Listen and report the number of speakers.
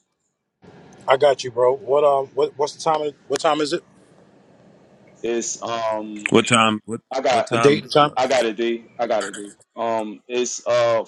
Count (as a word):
three